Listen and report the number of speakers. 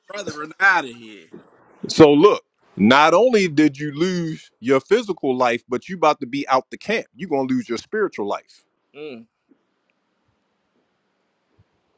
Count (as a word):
two